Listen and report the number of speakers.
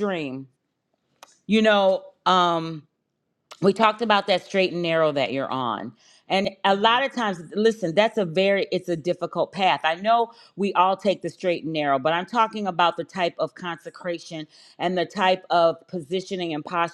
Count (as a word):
one